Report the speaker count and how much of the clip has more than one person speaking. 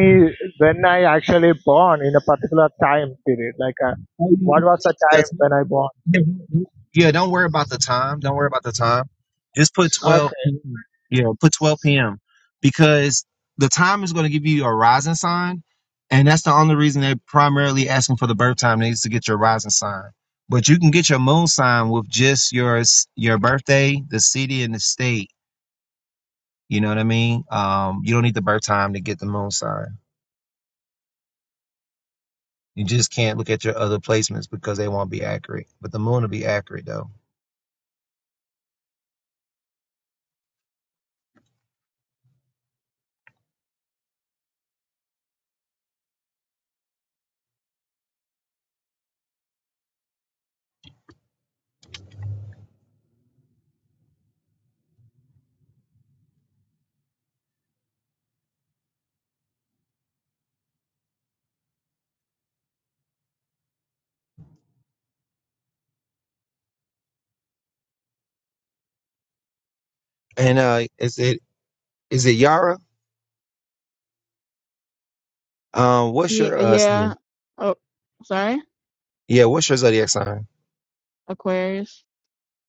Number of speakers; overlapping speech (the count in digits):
3, about 3%